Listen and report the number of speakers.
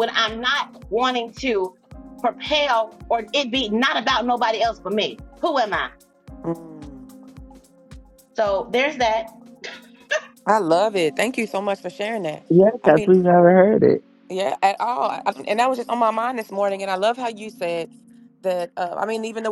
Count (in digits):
3